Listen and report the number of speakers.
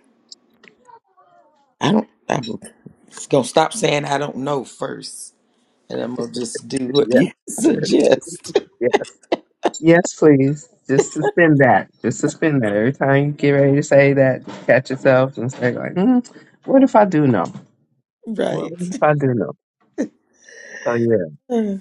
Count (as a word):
two